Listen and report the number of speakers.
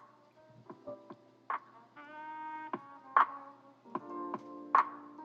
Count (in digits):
0